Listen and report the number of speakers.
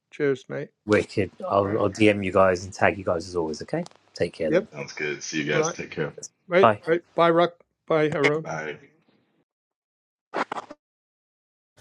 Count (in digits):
3